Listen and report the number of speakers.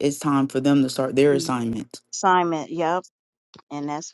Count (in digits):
2